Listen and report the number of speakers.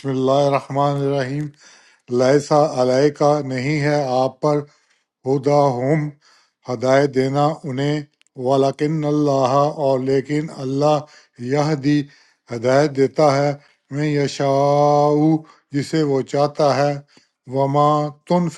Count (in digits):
1